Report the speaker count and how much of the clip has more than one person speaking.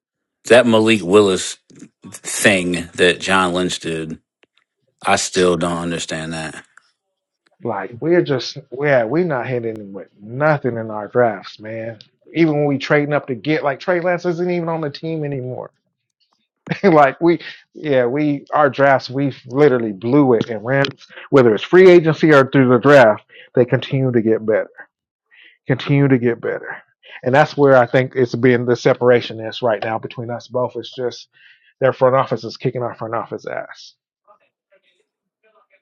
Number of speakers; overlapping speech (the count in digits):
2, no overlap